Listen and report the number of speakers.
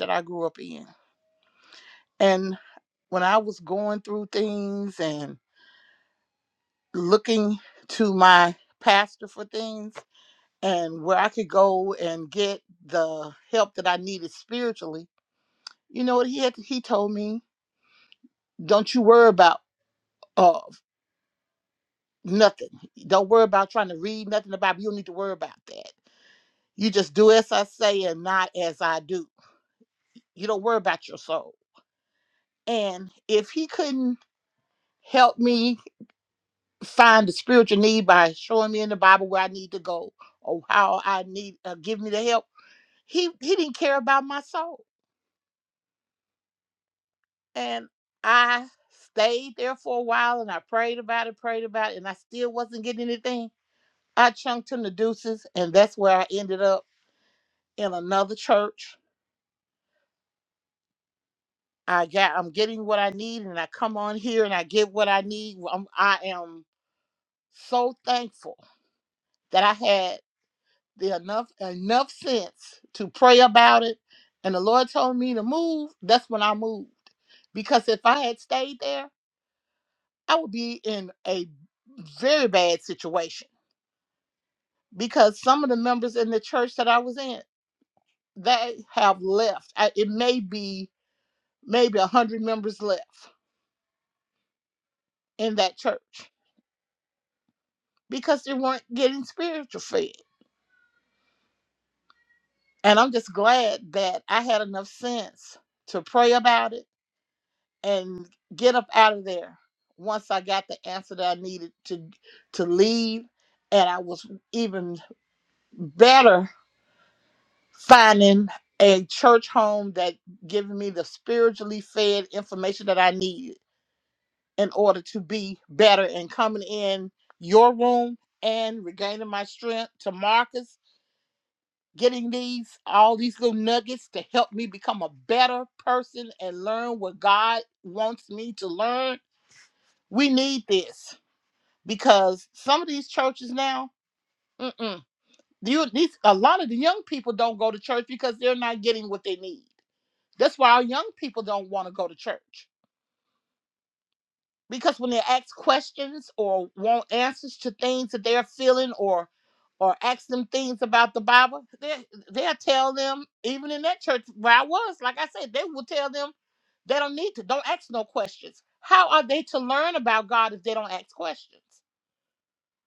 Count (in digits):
1